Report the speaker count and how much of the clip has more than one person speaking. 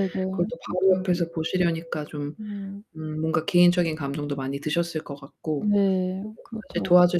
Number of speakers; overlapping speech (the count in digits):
2, about 15%